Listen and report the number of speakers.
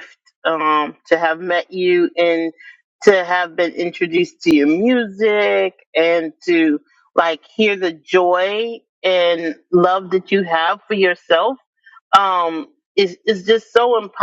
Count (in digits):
1